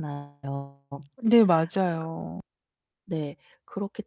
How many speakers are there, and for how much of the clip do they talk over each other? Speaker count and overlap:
2, no overlap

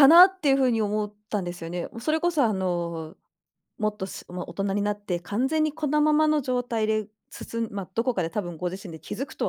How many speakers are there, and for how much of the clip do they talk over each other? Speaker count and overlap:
1, no overlap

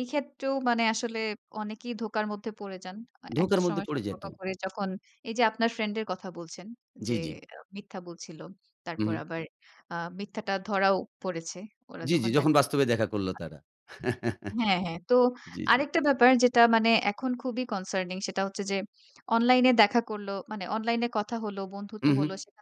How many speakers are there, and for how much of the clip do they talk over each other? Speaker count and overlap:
2, about 10%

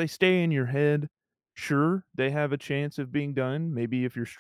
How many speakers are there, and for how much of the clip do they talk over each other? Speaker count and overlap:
1, no overlap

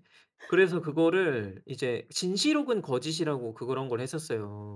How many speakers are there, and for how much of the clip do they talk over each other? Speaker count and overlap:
1, no overlap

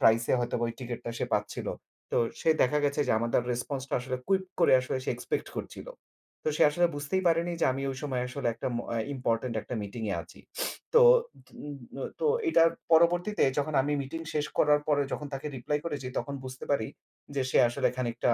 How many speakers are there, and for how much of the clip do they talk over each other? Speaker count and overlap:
1, no overlap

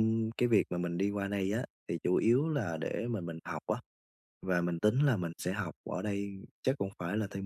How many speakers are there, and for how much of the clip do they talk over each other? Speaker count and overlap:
1, no overlap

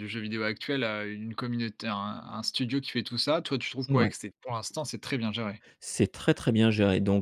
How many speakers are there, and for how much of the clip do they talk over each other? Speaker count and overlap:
2, about 3%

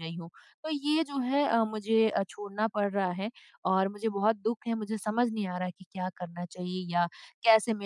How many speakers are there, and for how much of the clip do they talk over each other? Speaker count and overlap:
1, no overlap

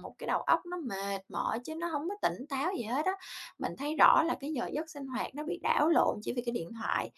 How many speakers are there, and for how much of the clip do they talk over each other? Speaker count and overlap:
1, no overlap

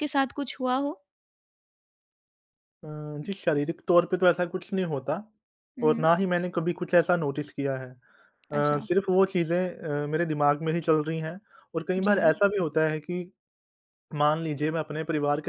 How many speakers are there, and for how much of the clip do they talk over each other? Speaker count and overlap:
2, about 6%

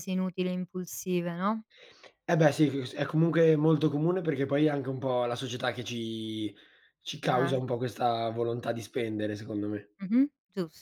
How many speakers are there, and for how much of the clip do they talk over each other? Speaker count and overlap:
2, about 3%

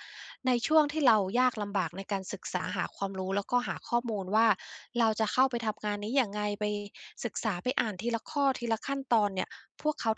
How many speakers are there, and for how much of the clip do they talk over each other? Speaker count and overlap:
1, no overlap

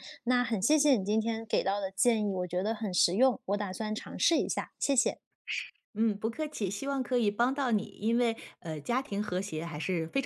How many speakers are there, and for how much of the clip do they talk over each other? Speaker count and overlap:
2, no overlap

